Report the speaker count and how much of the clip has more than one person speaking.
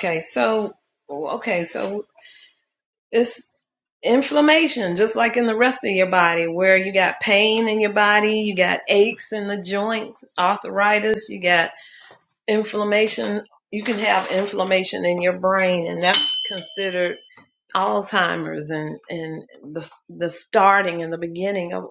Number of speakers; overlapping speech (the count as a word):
one, no overlap